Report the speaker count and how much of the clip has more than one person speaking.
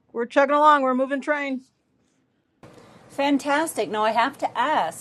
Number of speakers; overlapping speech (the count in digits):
2, no overlap